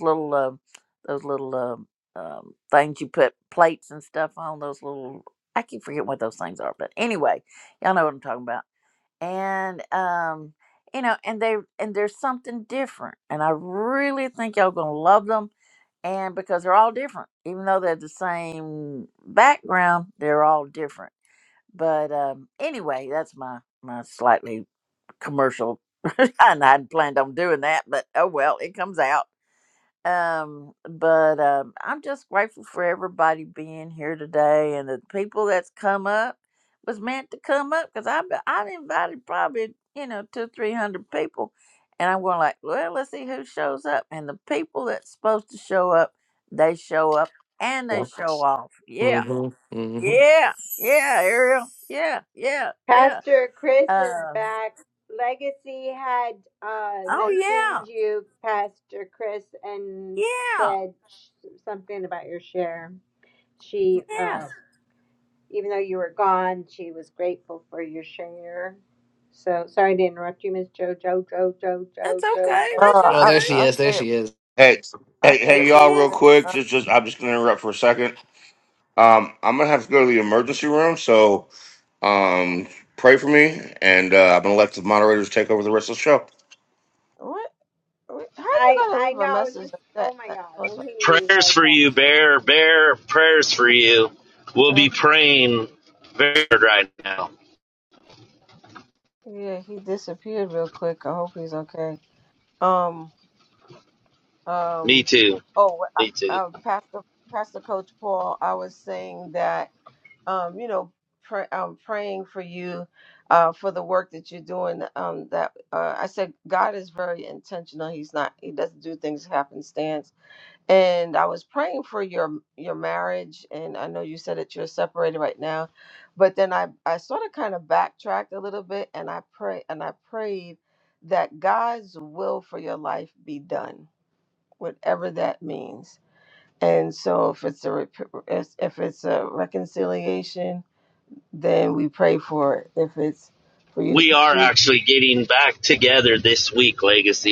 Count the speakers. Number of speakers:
six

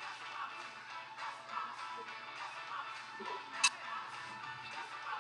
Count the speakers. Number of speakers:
zero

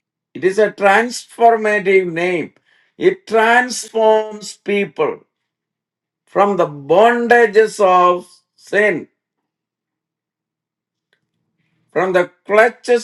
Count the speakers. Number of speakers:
one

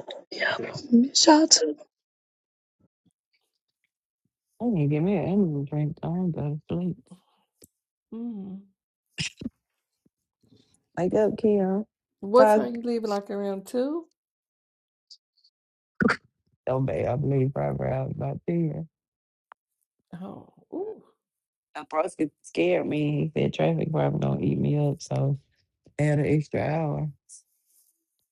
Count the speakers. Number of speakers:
three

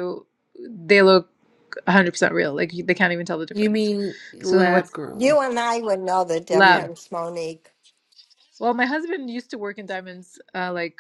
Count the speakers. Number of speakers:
three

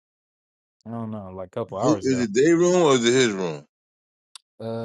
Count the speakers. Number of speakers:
two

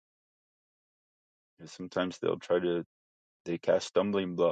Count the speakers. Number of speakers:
one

